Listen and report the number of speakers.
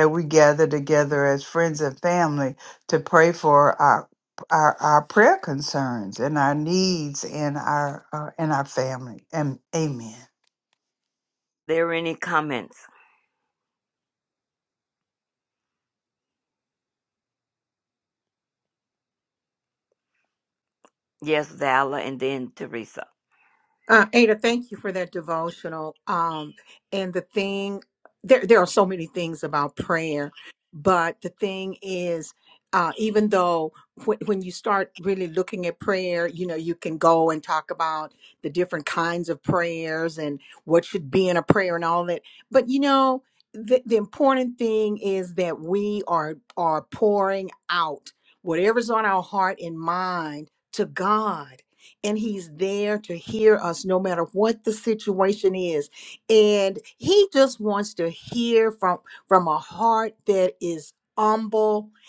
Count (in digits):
3